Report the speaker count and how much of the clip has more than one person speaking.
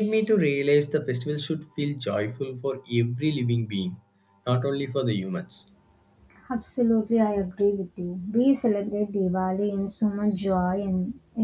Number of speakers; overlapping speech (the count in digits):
2, no overlap